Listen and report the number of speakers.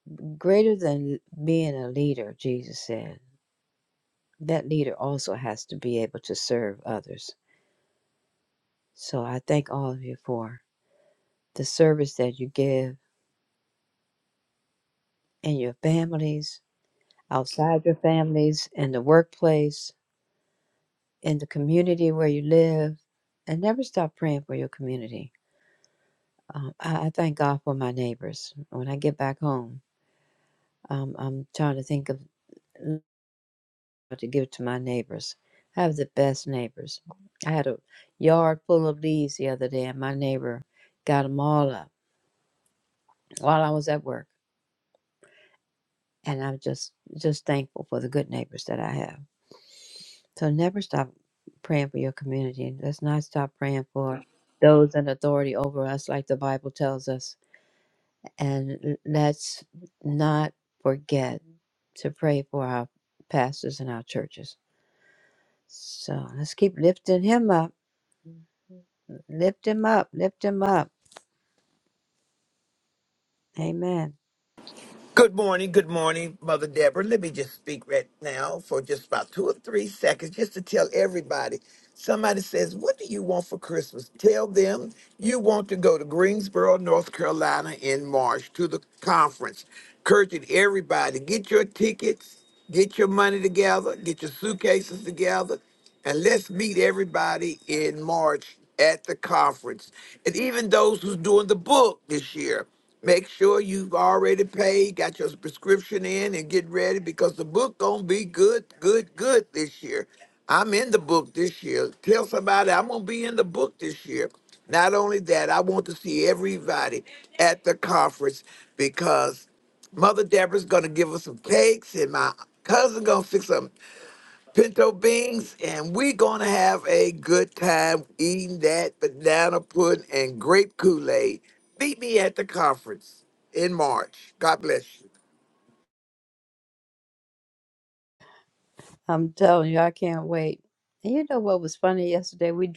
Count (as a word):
two